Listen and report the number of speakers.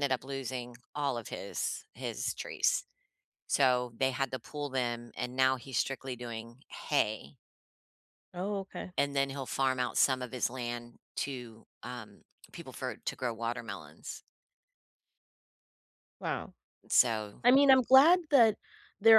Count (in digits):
2